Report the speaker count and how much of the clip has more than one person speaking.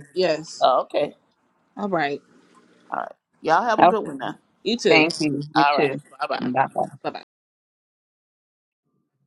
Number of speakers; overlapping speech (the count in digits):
3, about 12%